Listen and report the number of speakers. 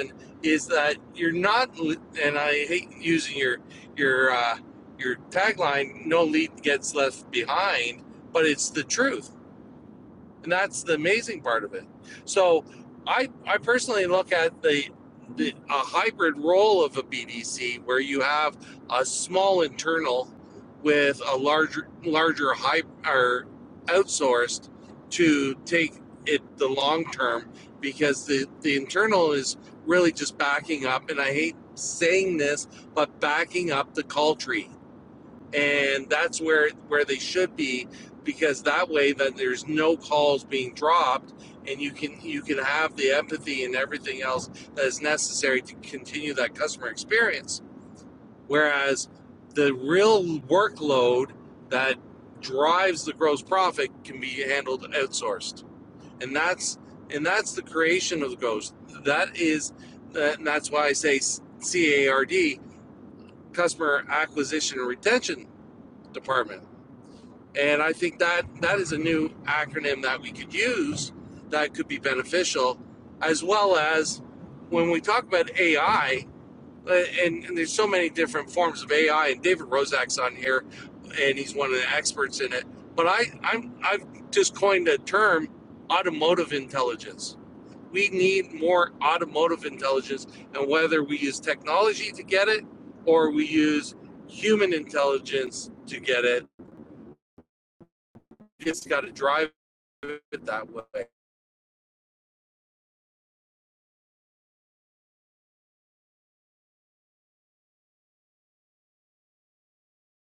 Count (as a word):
one